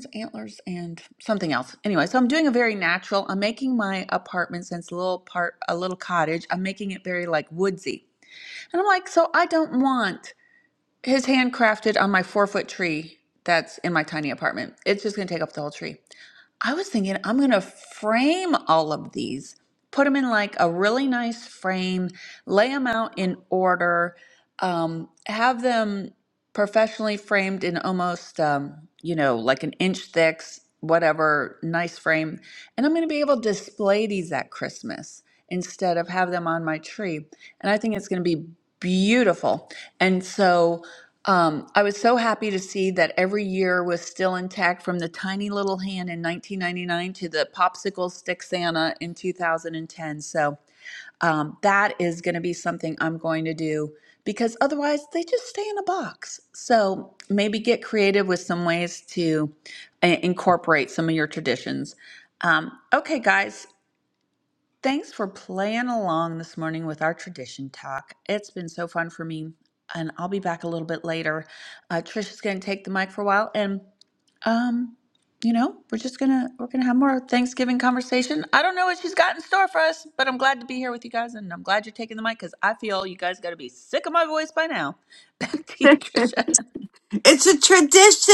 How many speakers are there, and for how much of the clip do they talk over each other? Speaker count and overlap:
two, no overlap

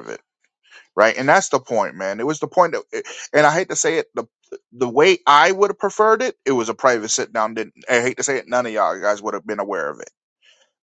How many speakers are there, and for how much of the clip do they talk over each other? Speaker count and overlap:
one, no overlap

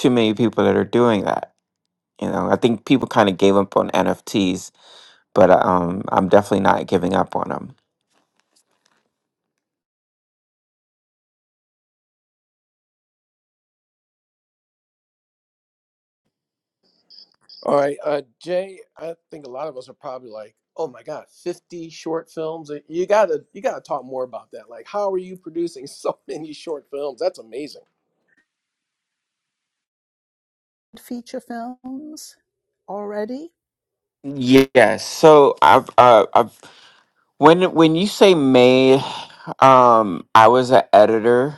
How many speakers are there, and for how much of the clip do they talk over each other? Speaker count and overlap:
three, no overlap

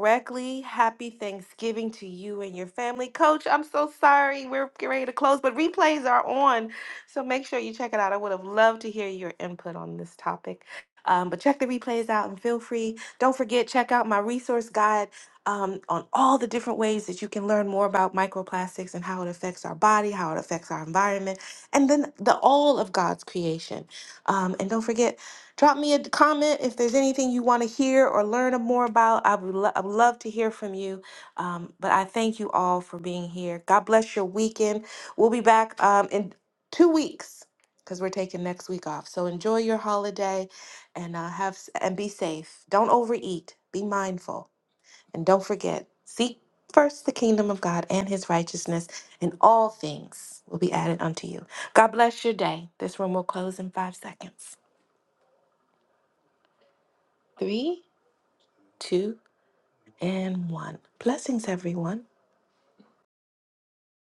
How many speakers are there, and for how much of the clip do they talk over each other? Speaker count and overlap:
one, no overlap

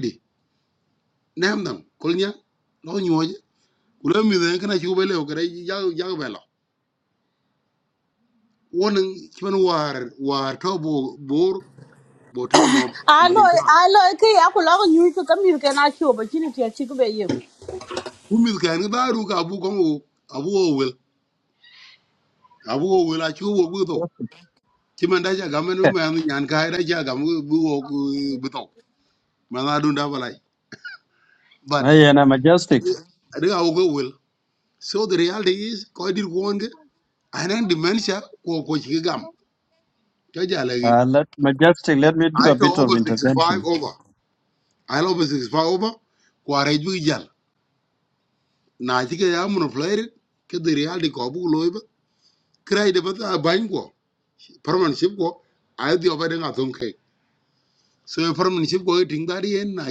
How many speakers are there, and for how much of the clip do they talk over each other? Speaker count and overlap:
three, about 3%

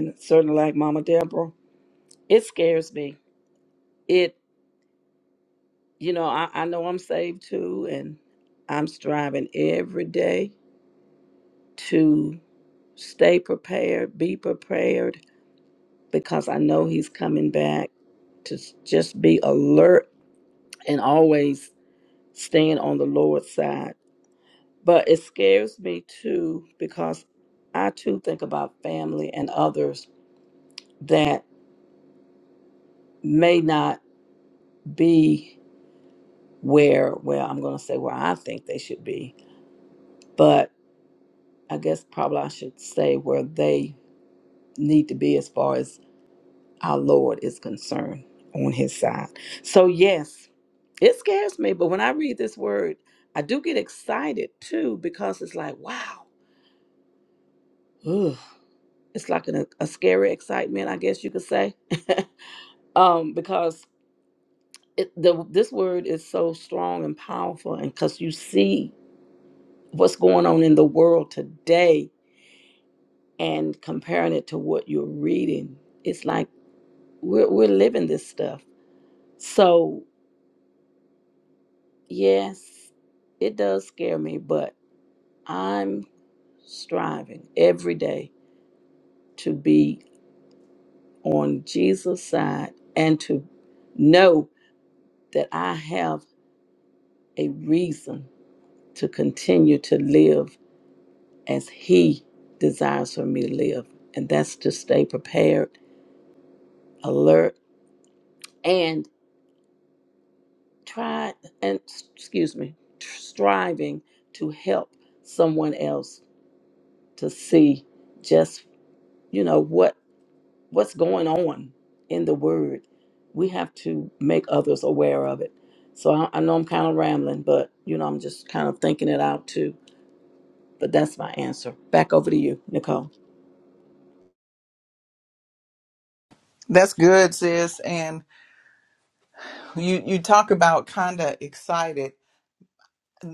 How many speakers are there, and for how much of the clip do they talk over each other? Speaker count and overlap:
two, no overlap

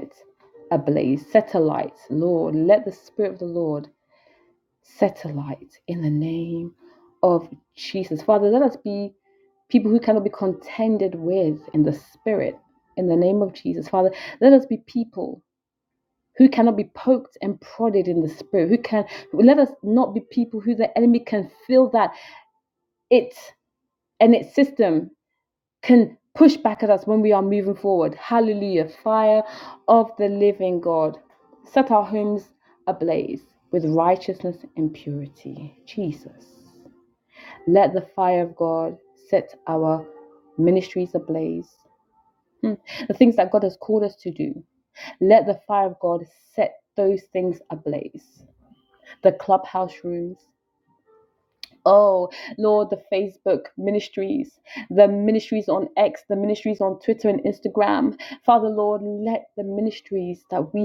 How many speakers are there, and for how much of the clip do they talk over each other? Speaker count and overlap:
one, no overlap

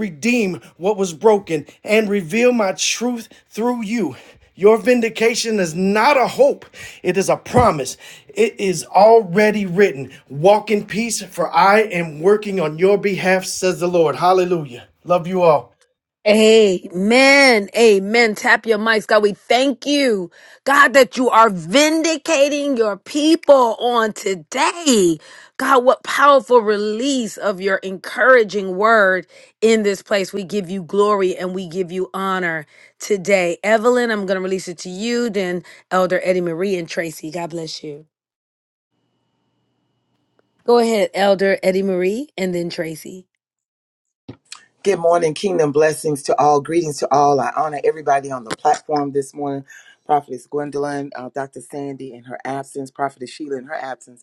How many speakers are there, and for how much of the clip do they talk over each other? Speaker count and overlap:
three, no overlap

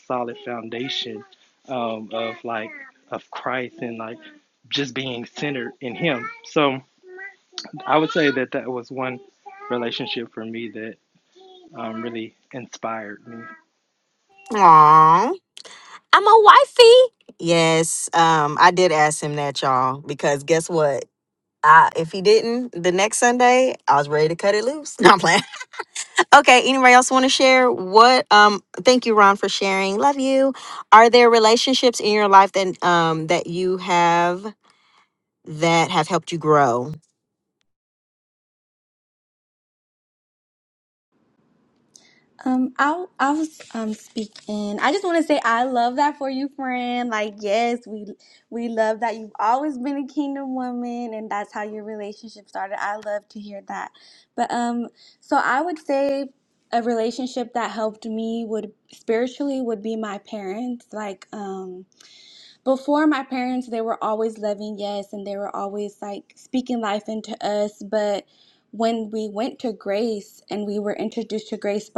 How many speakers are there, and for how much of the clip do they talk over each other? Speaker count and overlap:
three, no overlap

